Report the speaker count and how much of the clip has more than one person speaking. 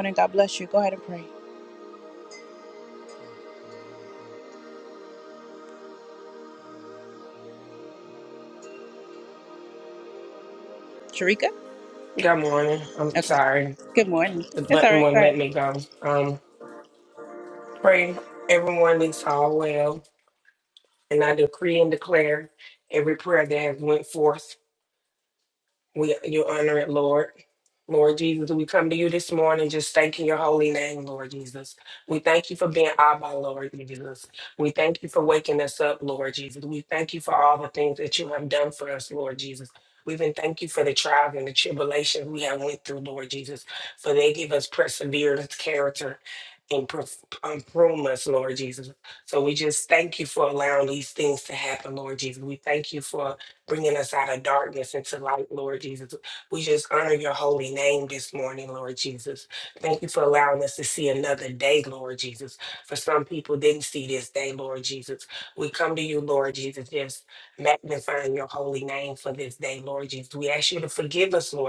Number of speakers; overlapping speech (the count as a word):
two, about 2%